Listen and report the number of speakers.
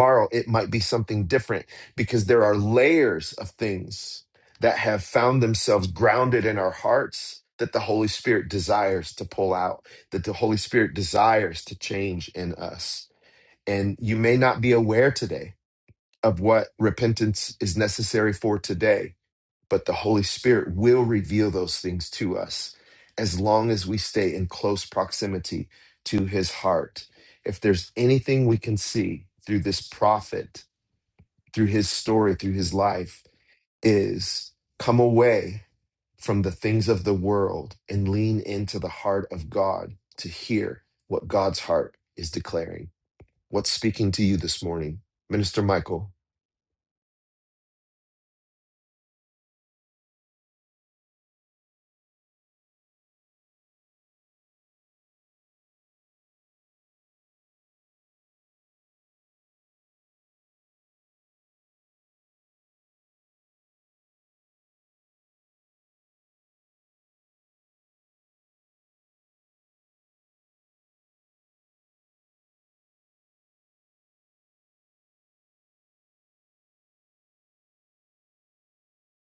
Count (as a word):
one